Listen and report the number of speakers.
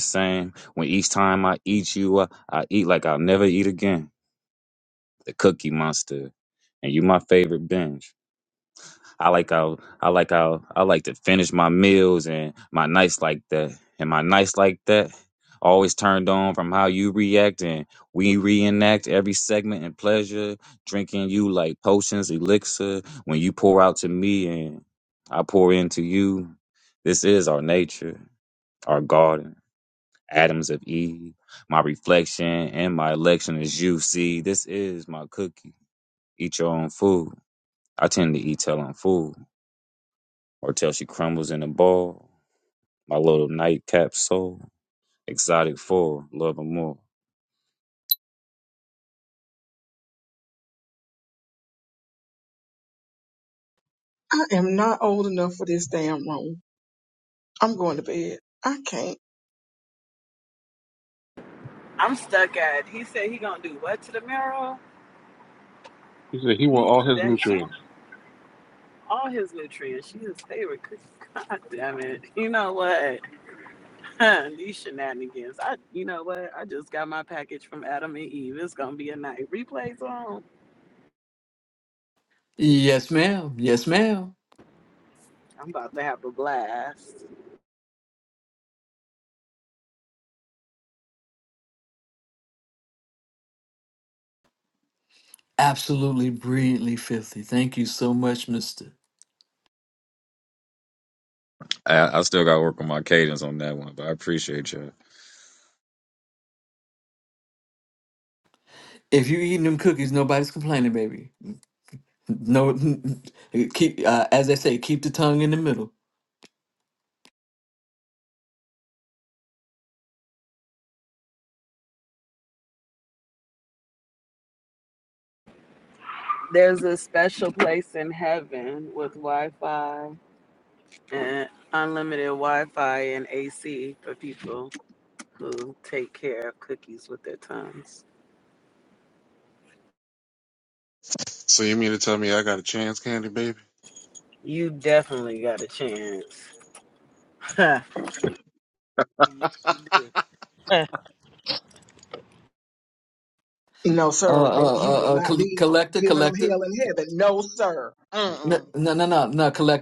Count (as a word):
five